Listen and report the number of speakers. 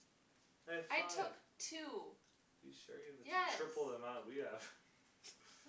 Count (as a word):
two